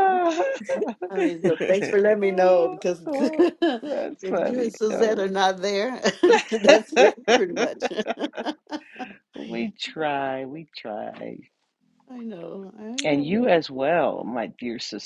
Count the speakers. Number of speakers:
2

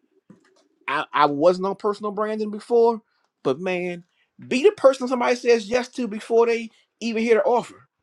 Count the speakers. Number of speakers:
1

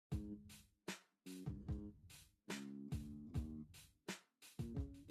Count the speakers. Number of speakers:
0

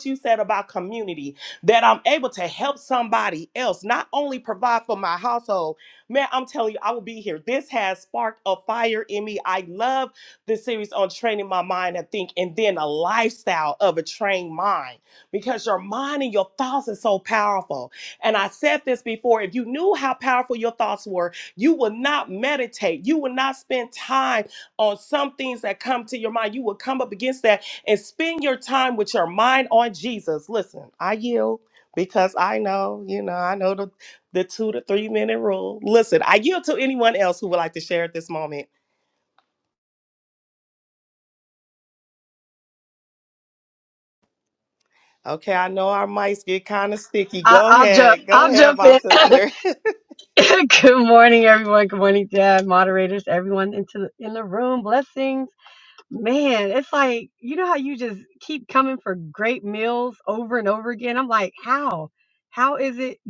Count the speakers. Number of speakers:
2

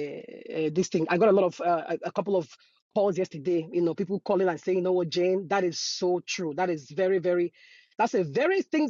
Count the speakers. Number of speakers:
1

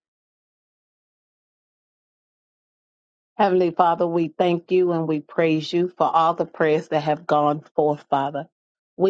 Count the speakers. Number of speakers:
1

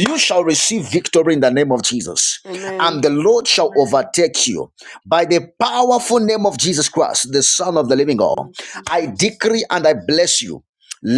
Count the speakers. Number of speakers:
2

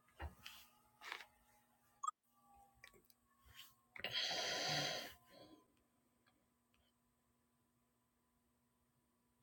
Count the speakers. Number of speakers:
0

